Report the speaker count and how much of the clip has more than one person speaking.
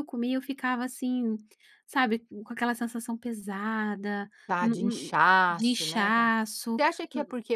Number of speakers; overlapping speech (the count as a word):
two, about 19%